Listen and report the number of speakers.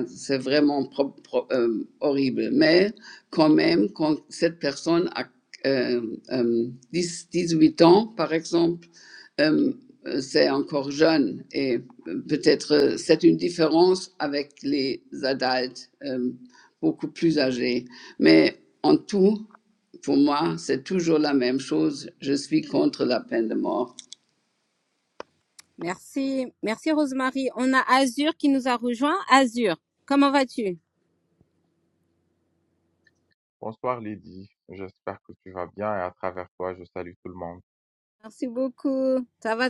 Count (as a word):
three